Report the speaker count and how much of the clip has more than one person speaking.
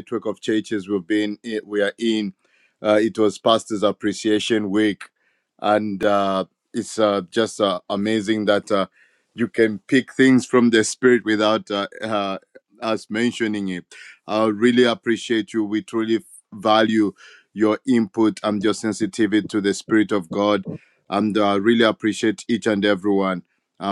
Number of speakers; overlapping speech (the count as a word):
one, no overlap